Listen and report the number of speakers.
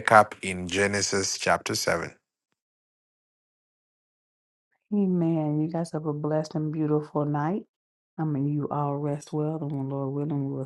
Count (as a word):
two